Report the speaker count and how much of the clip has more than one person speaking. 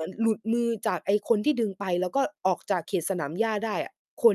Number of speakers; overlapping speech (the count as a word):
one, no overlap